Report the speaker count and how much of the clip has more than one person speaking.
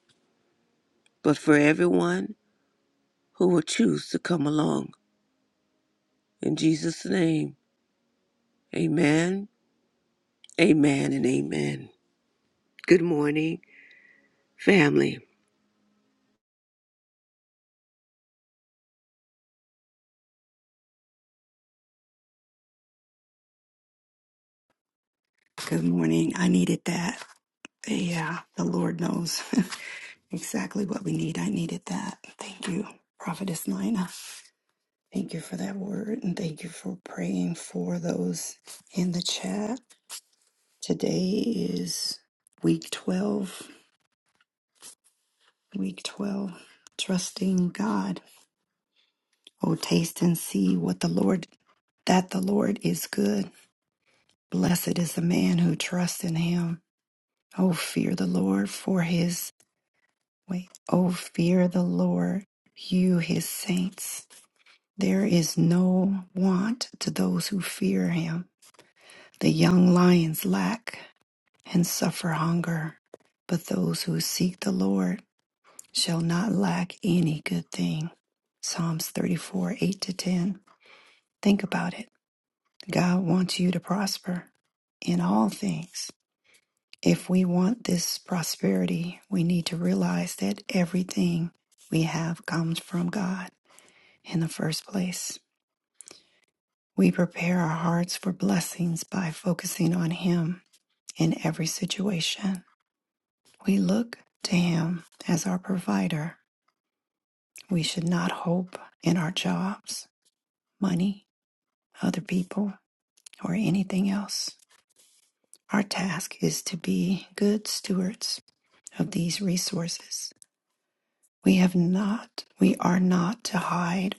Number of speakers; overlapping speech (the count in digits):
2, no overlap